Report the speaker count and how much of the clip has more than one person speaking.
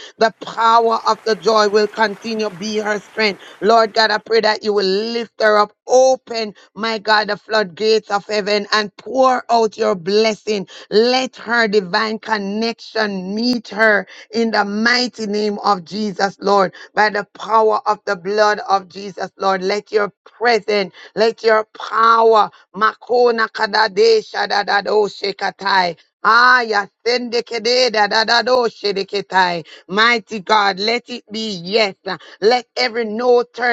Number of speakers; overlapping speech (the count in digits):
1, no overlap